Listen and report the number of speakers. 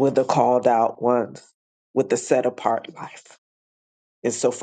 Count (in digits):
1